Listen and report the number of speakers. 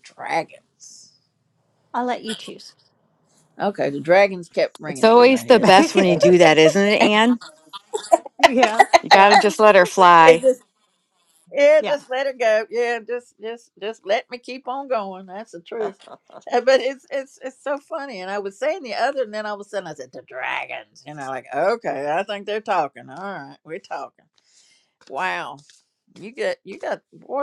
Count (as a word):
three